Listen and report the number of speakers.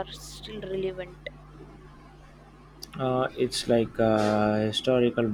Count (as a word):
two